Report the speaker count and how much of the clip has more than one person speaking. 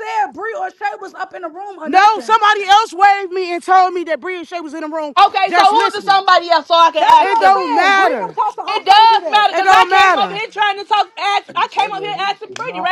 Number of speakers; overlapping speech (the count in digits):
3, about 31%